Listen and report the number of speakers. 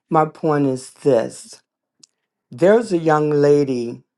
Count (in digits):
1